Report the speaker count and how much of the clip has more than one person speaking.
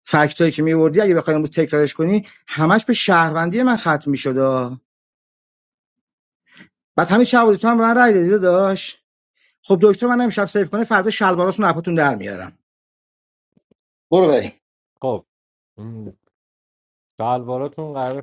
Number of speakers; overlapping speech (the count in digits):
2, no overlap